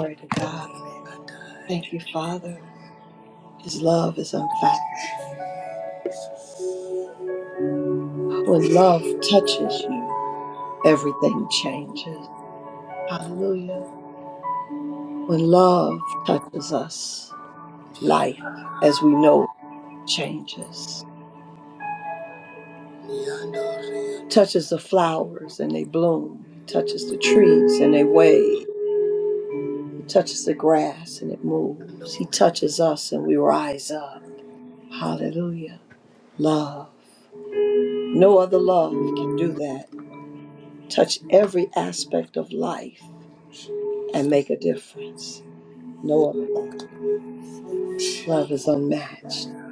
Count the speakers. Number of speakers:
2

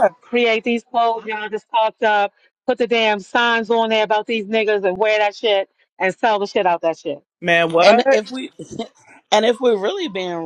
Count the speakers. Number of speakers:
3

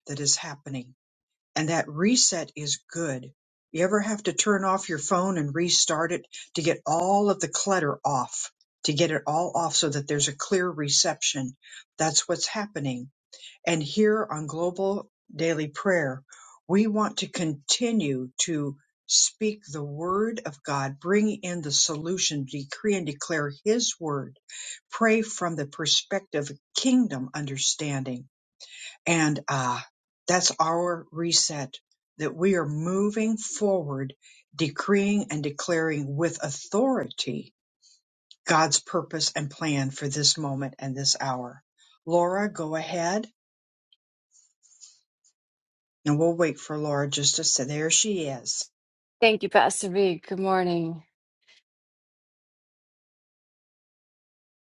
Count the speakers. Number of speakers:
2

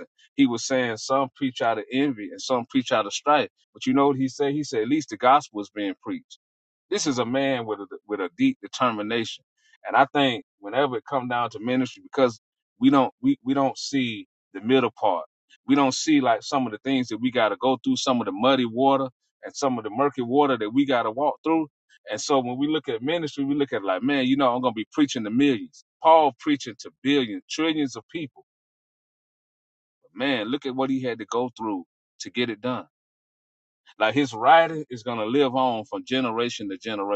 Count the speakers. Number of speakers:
1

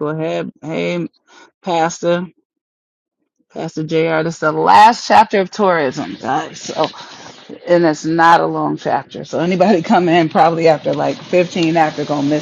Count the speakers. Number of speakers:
1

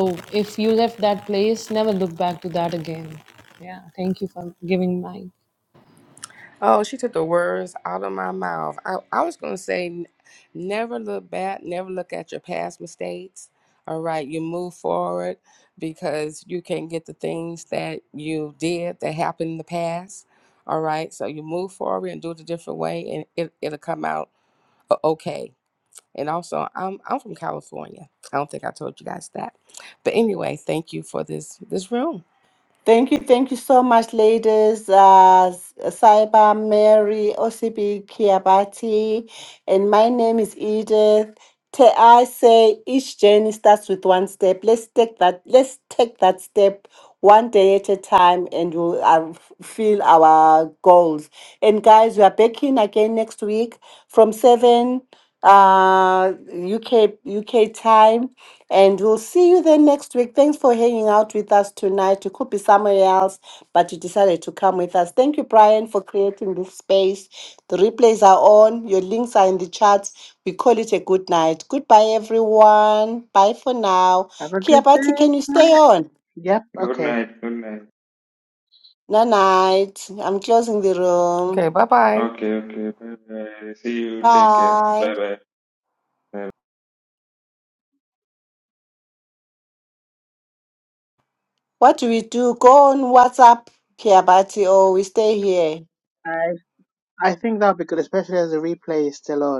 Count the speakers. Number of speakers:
5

